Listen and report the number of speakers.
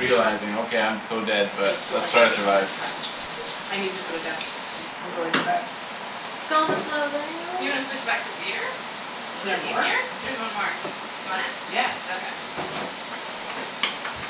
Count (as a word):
three